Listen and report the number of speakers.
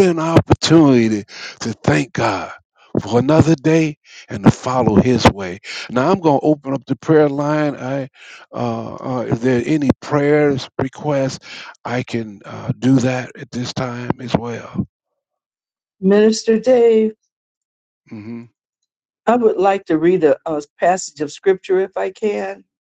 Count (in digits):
2